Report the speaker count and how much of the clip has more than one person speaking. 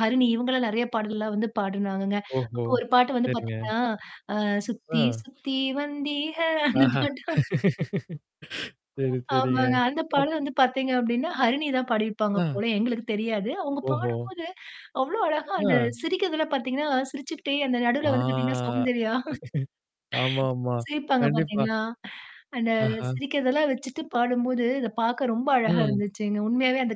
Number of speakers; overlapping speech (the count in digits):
2, about 14%